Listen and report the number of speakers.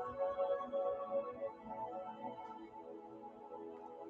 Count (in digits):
0